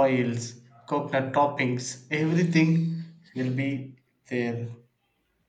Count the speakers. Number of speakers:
one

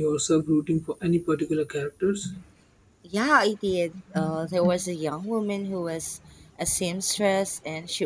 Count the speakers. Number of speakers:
two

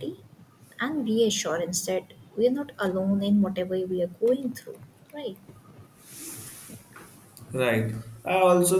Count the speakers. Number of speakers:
two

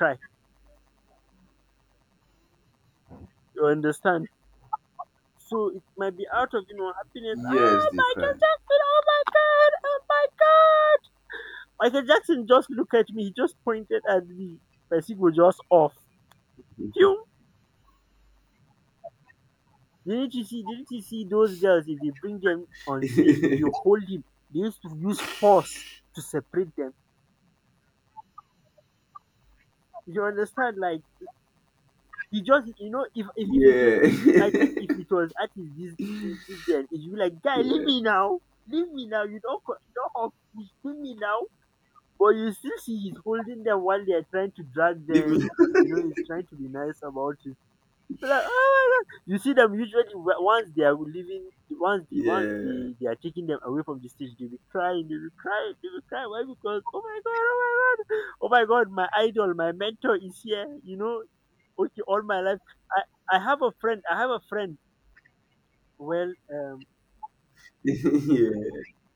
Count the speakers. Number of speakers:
two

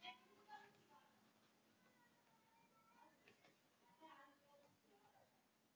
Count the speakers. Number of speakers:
zero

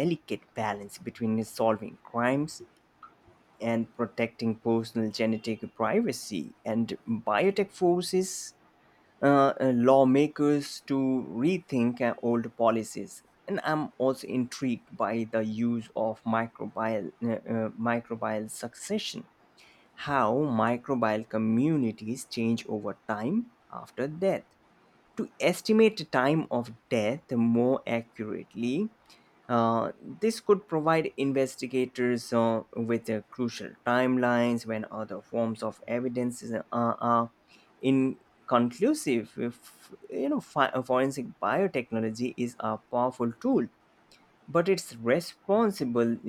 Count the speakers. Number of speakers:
one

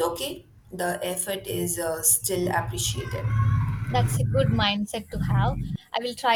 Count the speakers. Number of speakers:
two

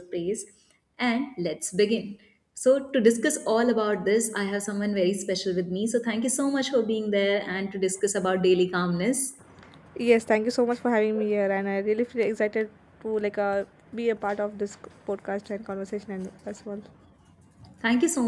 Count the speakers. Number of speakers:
two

